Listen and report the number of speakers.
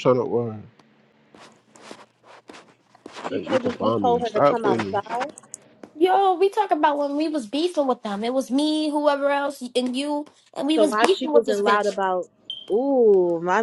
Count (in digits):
3